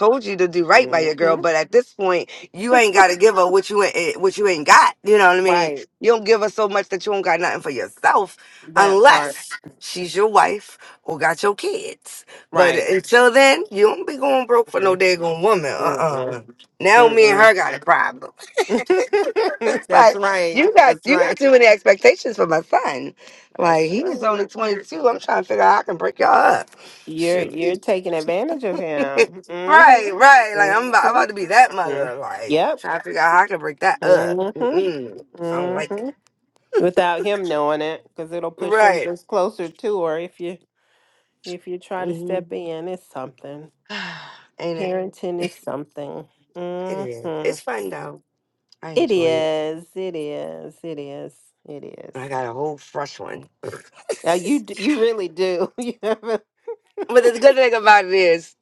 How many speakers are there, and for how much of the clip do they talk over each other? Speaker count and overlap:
two, about 20%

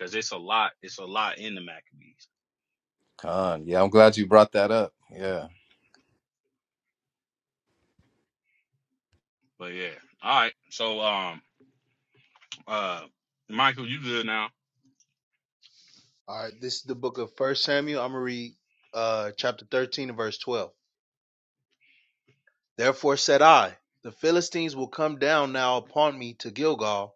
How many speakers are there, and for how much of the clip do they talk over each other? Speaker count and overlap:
three, no overlap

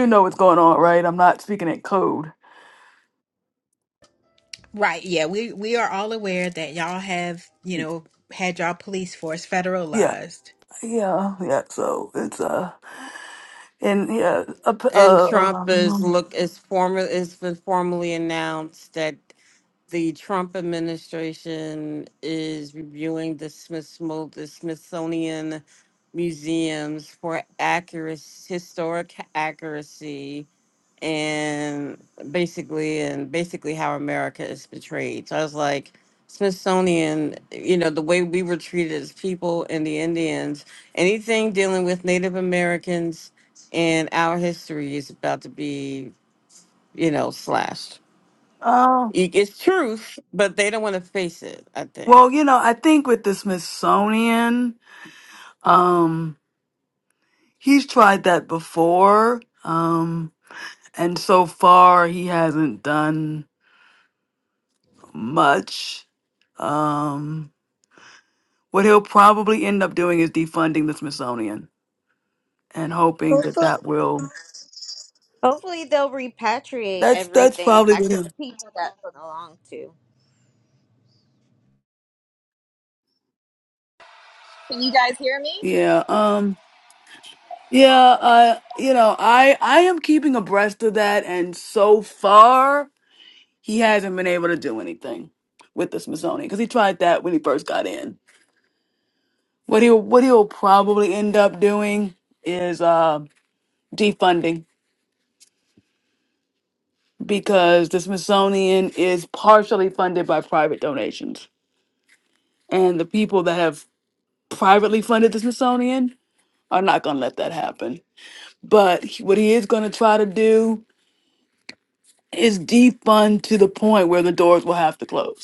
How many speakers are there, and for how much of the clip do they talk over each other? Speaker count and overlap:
five, about 3%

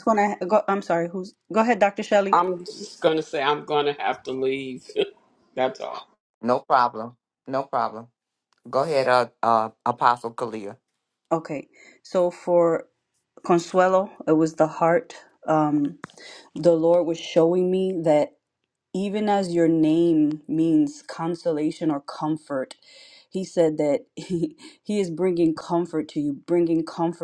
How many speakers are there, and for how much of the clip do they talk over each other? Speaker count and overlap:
three, under 1%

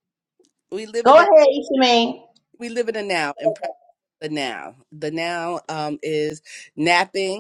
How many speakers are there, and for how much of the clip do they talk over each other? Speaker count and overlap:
two, about 2%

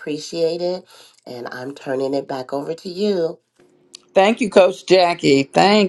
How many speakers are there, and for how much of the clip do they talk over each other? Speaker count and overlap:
two, no overlap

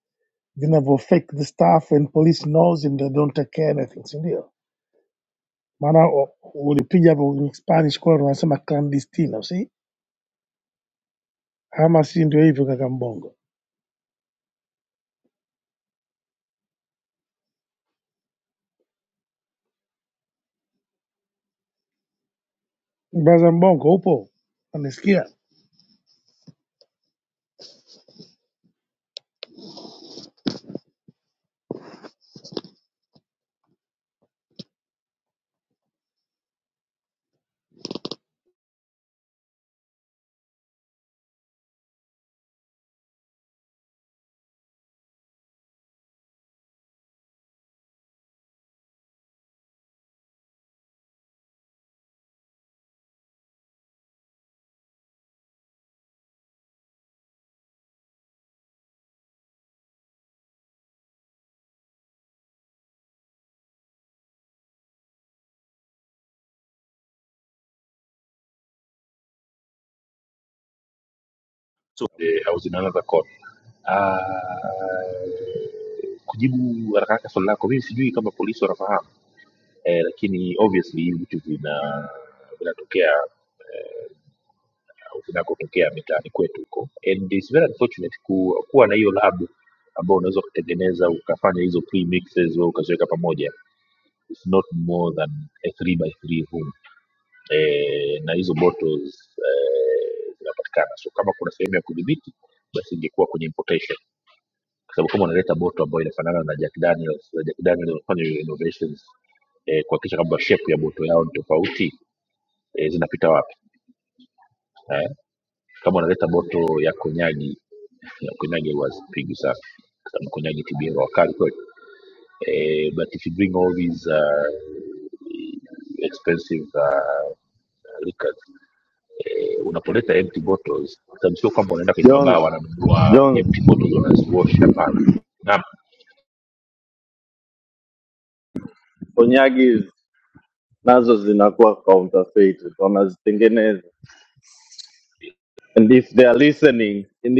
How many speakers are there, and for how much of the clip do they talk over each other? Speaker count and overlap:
three, about 1%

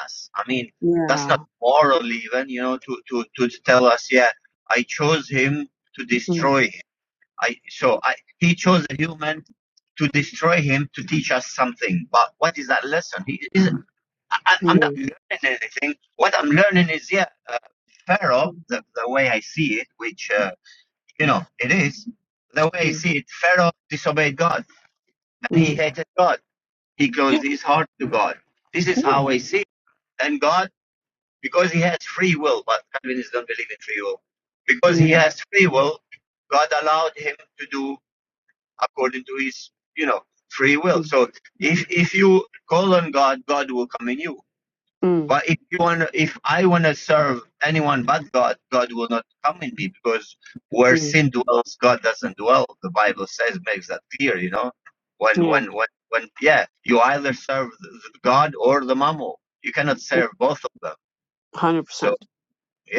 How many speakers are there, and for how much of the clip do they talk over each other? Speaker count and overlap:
two, about 5%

